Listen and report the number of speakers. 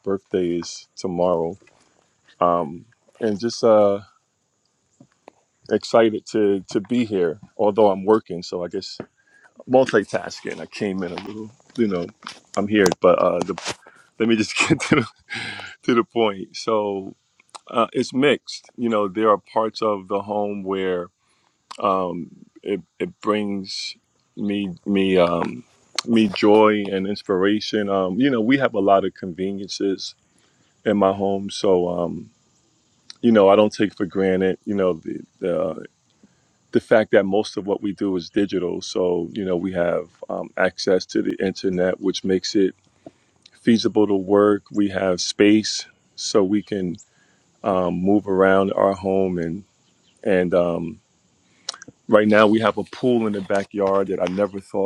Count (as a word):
one